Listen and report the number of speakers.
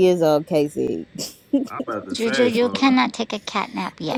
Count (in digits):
3